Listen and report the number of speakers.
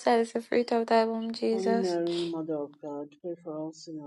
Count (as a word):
two